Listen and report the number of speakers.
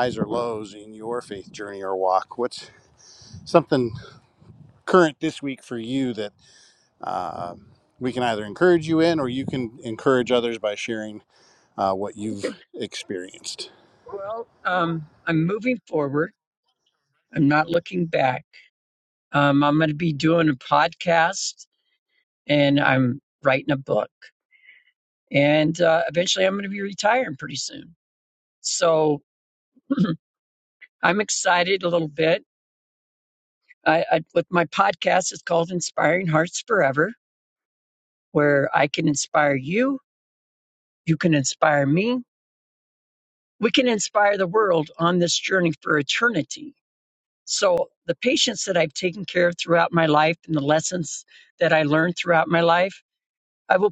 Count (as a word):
two